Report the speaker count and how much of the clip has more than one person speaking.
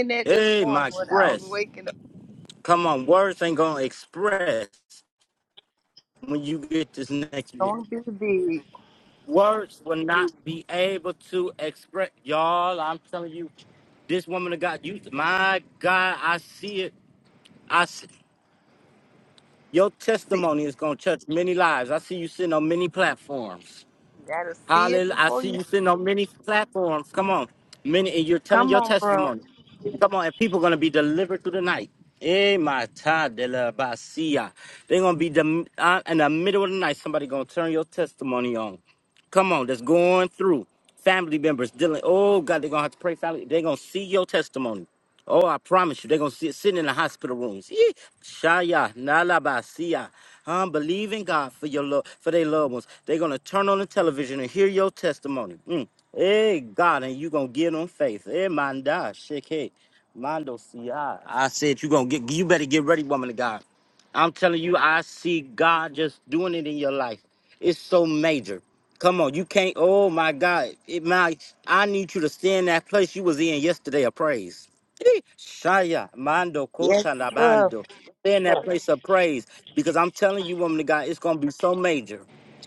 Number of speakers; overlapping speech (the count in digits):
2, about 5%